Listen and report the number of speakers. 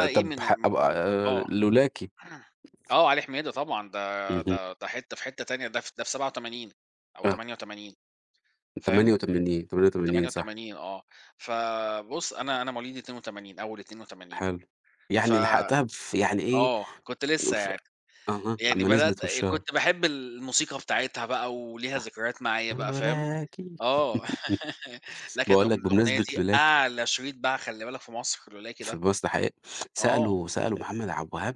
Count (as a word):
two